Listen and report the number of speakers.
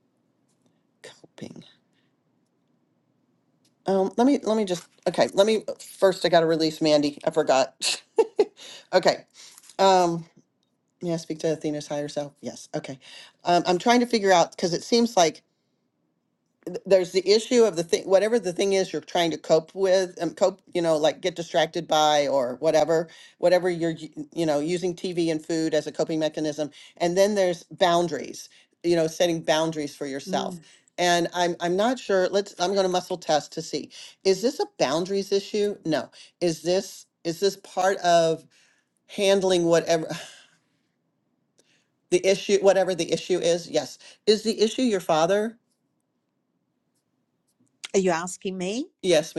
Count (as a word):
two